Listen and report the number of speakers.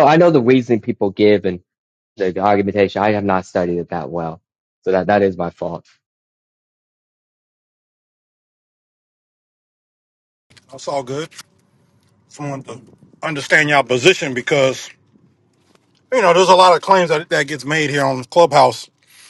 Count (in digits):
2